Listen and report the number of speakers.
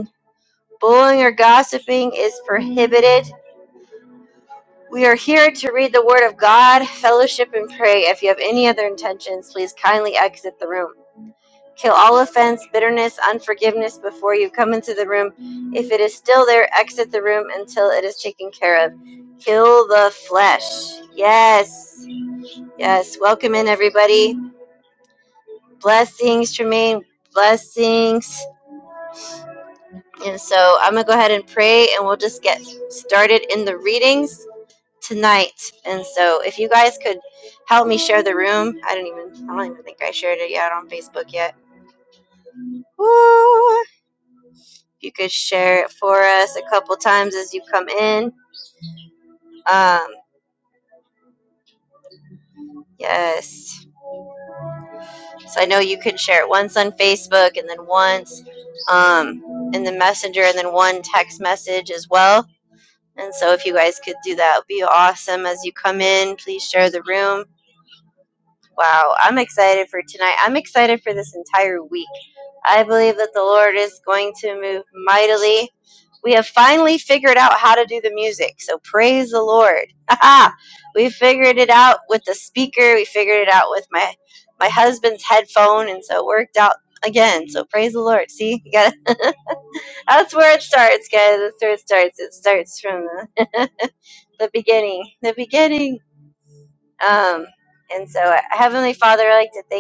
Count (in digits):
1